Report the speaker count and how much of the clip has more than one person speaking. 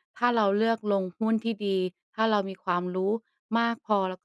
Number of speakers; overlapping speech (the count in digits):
1, no overlap